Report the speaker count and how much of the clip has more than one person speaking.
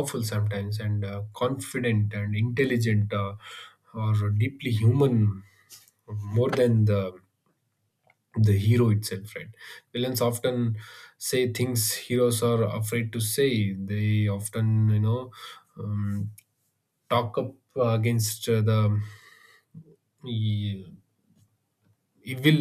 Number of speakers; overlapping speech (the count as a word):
one, no overlap